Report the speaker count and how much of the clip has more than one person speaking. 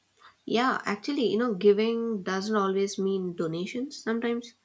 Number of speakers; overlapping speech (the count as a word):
one, no overlap